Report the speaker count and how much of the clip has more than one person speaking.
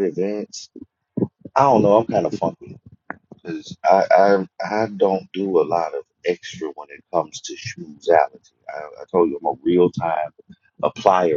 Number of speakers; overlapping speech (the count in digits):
1, no overlap